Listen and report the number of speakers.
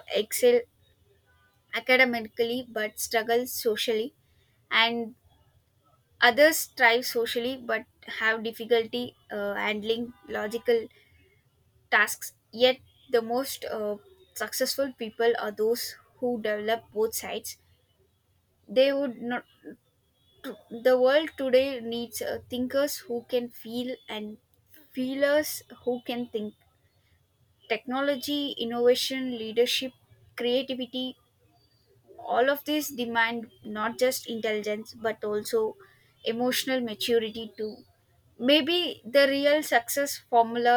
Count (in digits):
1